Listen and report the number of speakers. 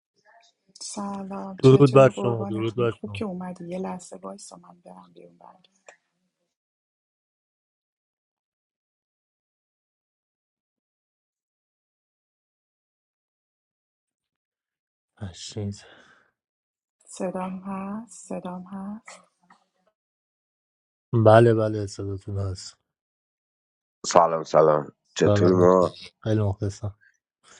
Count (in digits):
3